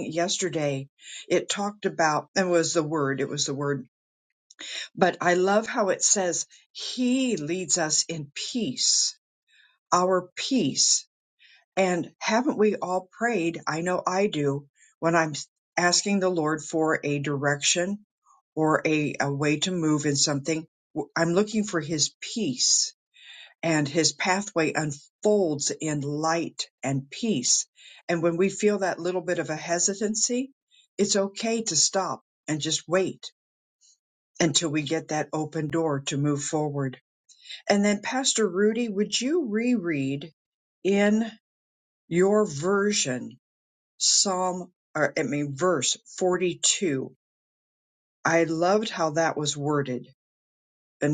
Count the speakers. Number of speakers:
1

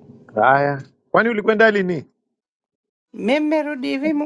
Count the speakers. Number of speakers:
2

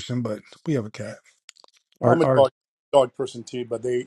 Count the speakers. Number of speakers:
2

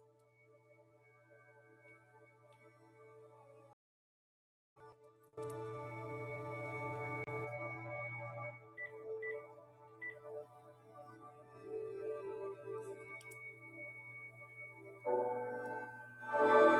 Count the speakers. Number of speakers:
0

